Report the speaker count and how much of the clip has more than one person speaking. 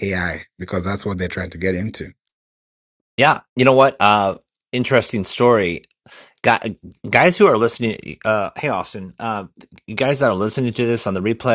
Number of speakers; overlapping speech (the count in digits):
2, no overlap